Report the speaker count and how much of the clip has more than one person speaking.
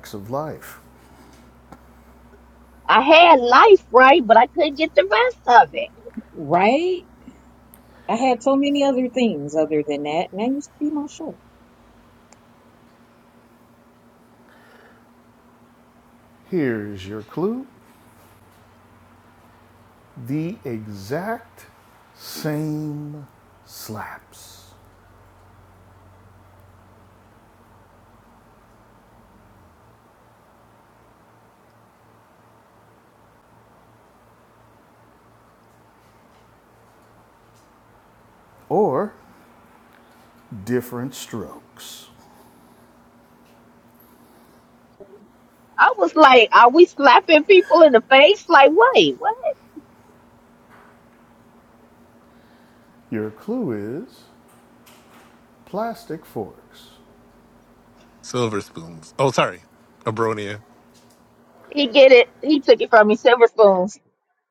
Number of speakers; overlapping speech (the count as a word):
four, no overlap